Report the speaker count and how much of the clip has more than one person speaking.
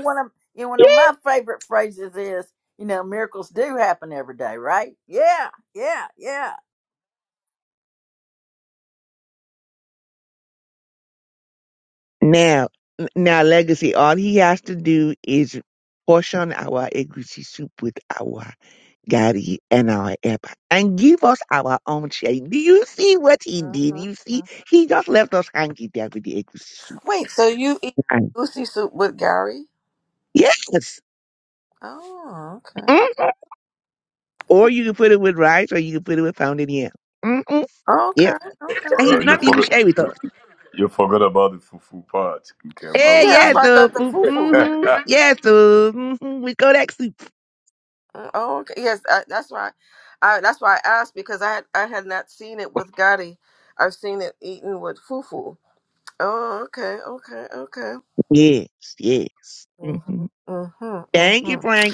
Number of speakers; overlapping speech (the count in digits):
4, about 7%